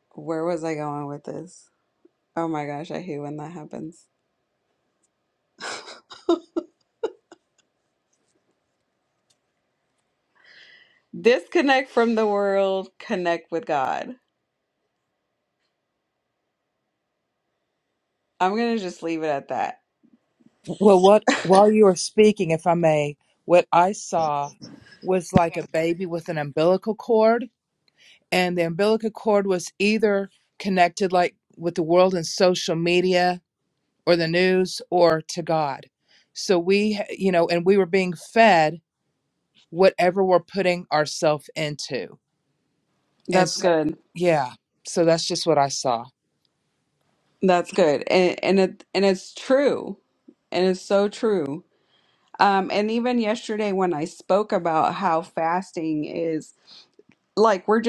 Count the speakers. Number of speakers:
2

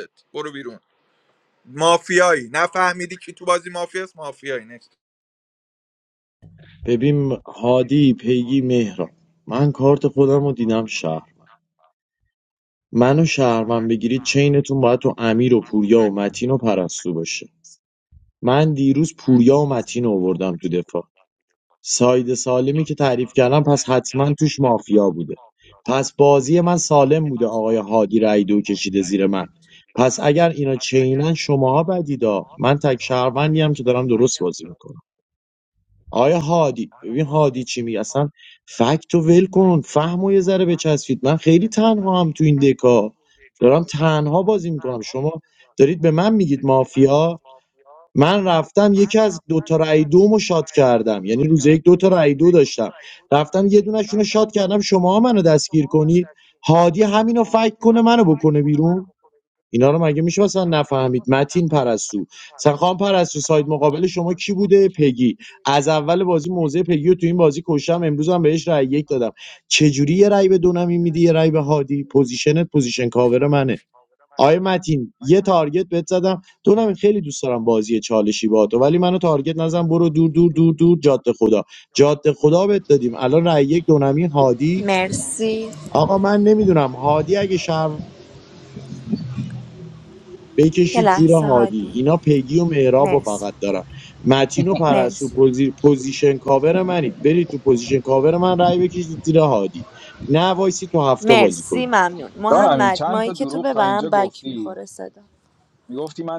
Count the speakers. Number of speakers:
4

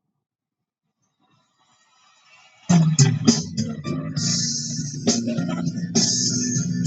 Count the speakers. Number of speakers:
0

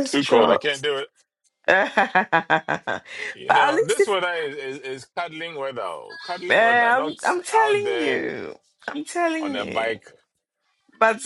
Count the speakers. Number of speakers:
2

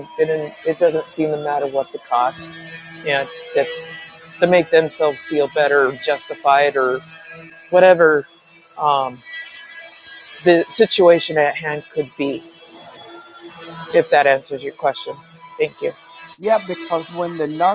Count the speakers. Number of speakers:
2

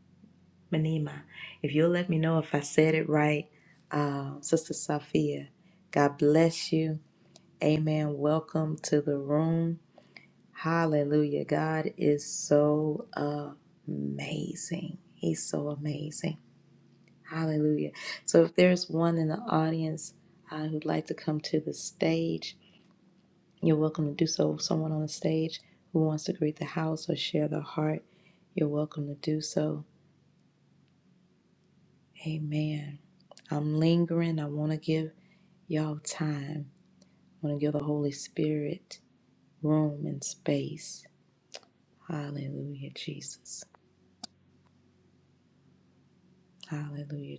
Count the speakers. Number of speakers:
1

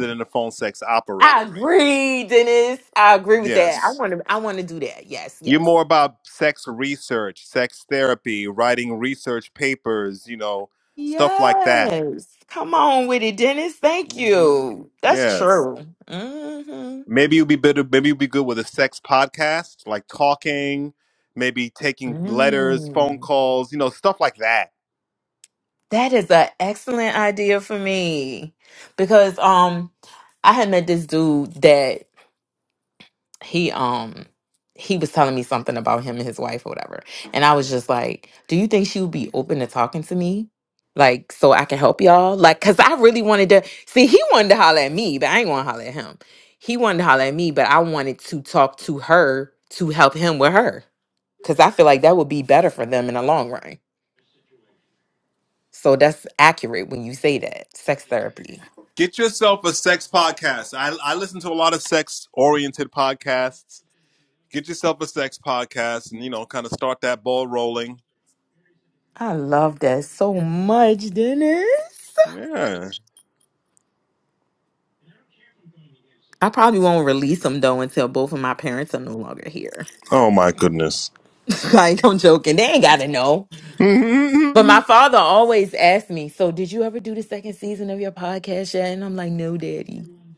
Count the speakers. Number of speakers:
2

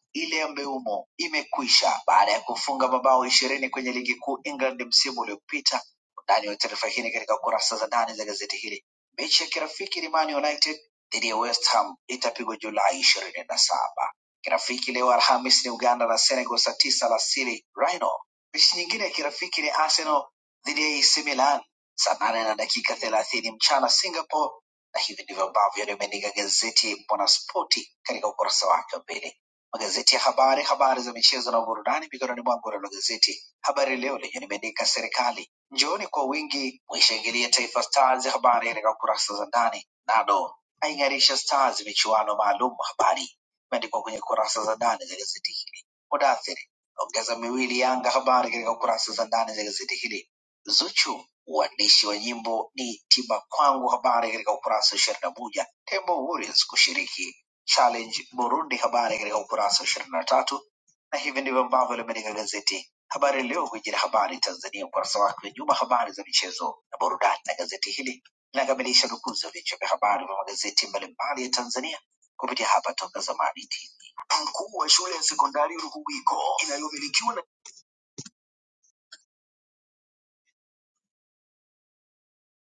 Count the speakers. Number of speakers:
1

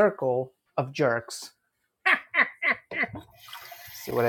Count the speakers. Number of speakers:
1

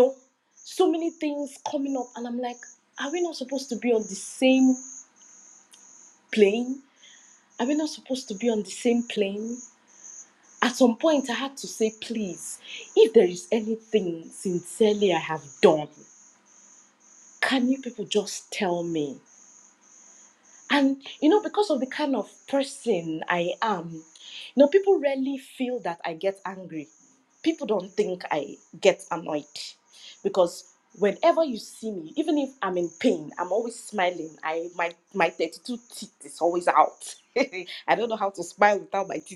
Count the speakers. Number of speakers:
1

